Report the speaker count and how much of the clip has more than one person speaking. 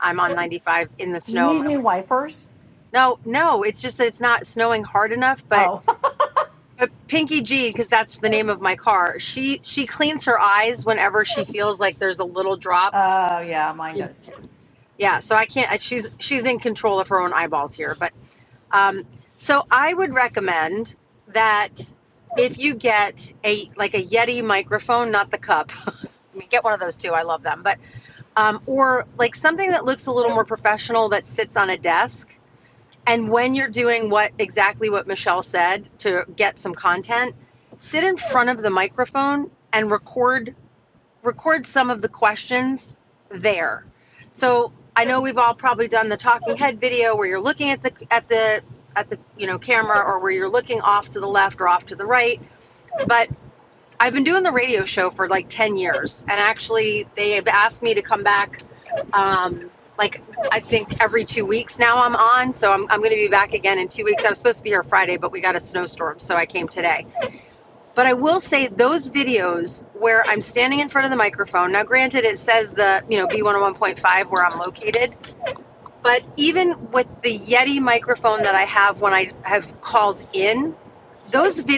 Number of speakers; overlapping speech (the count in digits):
2, about 1%